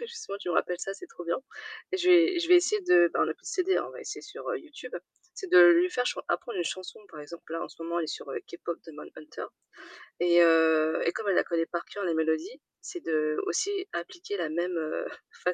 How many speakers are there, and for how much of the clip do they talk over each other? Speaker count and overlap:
1, no overlap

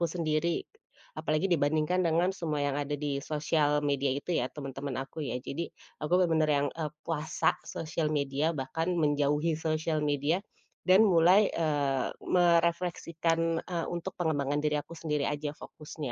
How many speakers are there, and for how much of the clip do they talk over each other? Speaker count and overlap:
1, no overlap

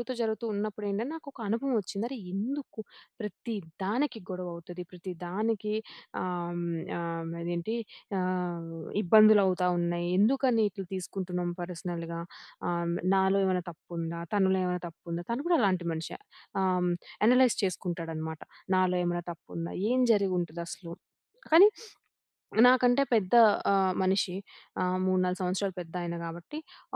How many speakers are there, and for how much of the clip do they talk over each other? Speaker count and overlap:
1, no overlap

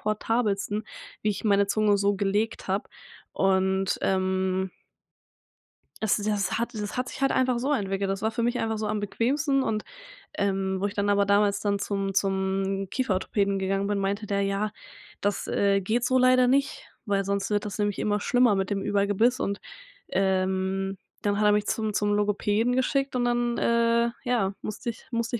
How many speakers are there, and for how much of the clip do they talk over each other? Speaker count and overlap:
1, no overlap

